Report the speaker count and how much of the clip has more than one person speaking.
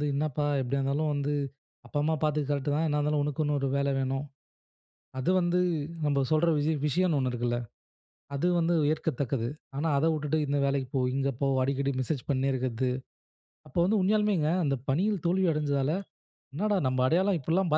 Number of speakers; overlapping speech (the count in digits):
1, no overlap